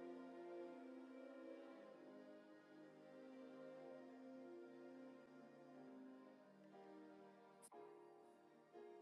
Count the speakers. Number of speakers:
0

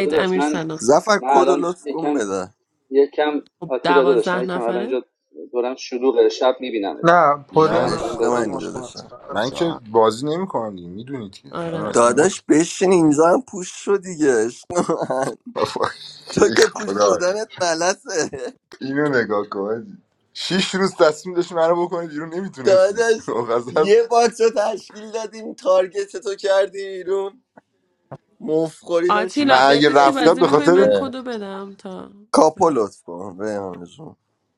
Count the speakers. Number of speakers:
5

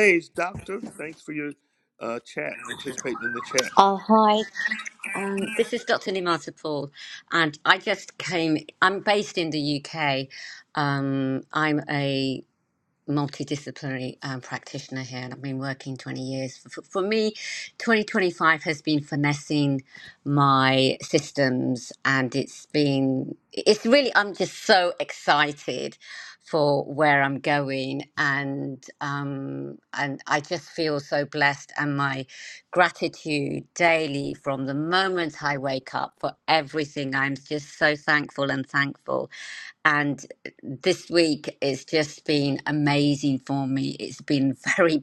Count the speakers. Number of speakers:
2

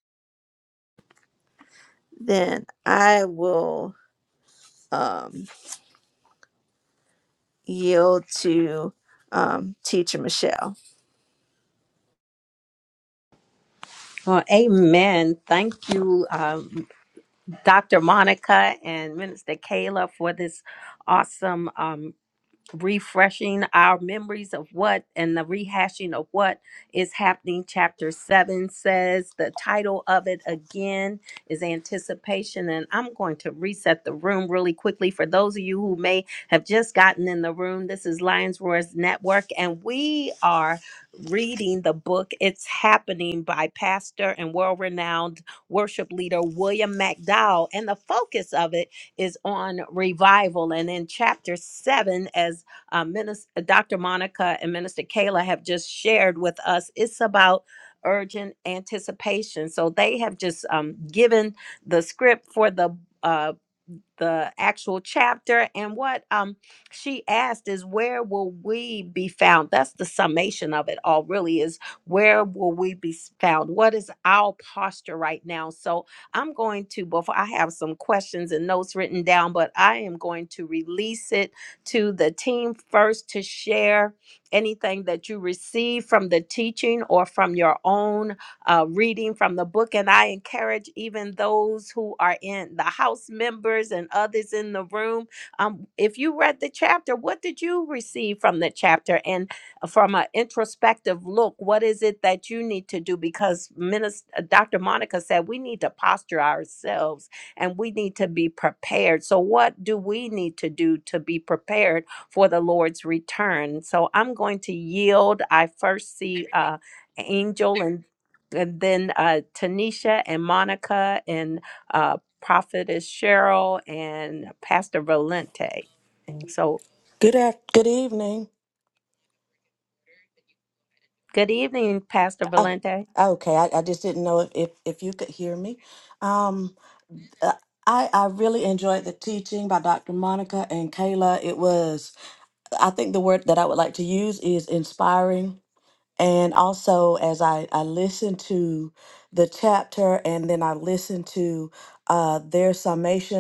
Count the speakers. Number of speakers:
3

